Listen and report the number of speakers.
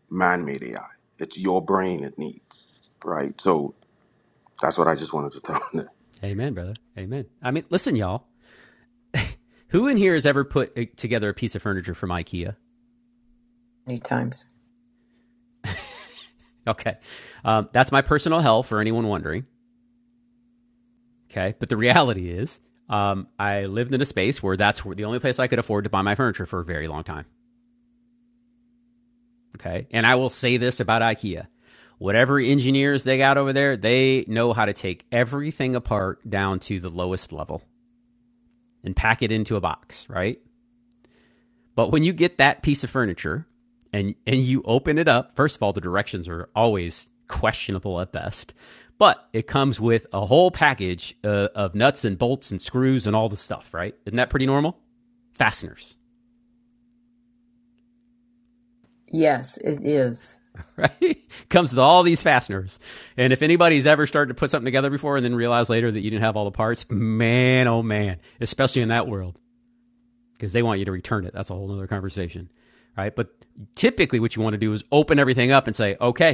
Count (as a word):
three